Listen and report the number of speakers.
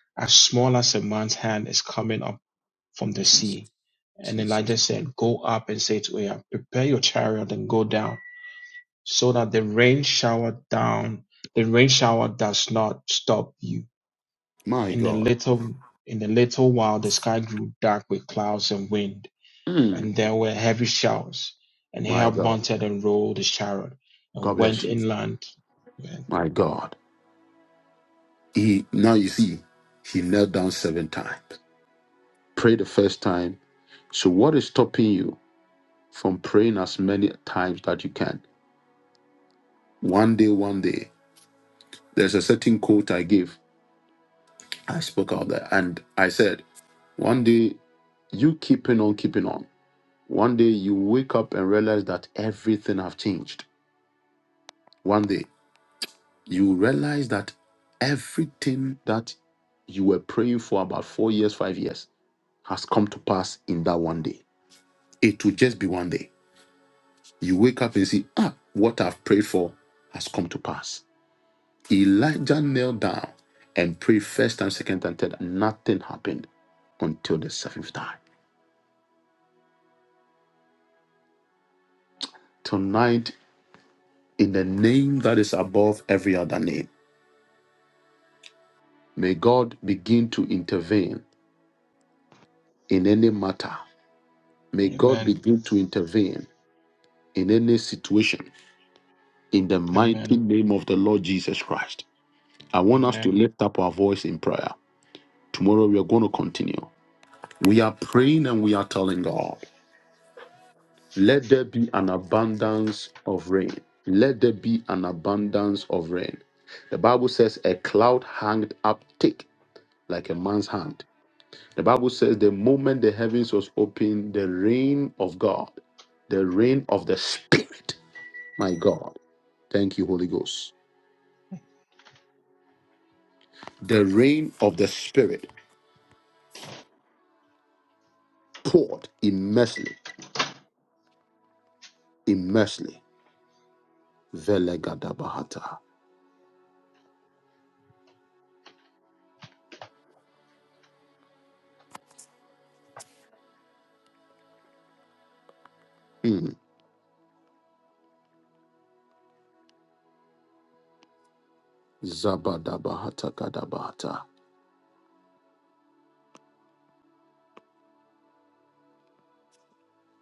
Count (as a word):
two